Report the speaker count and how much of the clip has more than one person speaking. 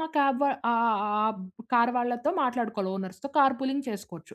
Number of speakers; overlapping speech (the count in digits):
1, no overlap